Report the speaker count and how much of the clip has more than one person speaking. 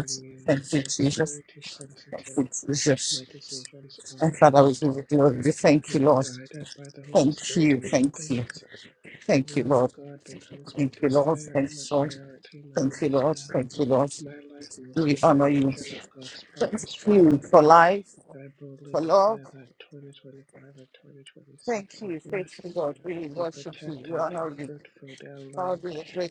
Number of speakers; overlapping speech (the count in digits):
2, about 45%